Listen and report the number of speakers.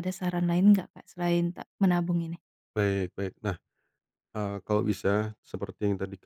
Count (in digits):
2